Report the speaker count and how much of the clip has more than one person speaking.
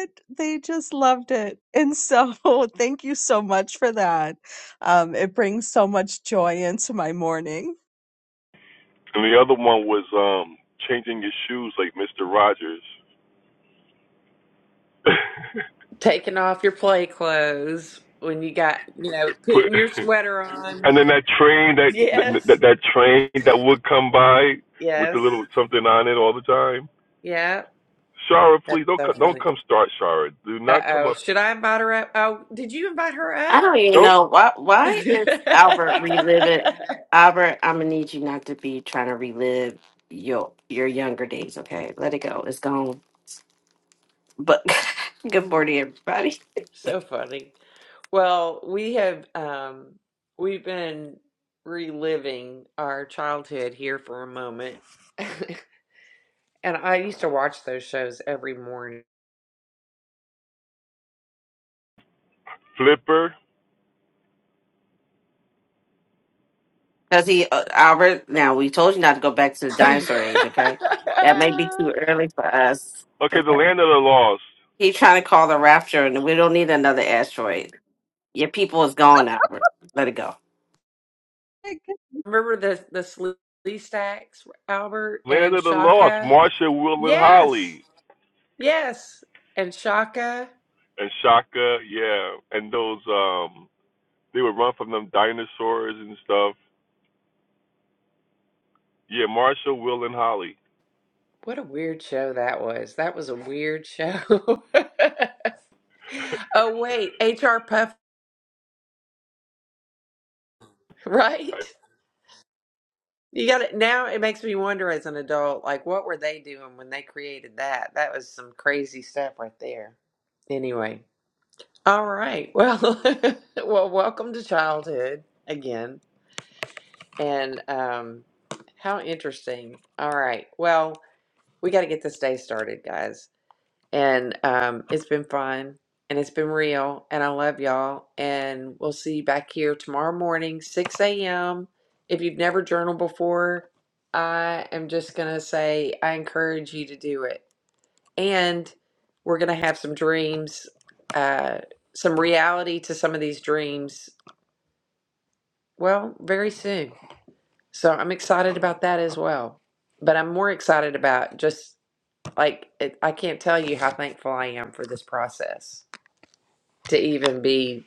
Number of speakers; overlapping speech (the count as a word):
four, about 3%